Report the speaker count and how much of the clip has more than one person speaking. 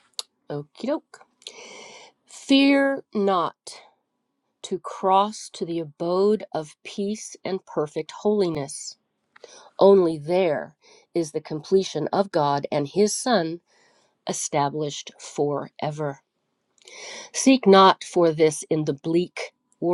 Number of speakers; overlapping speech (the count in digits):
1, no overlap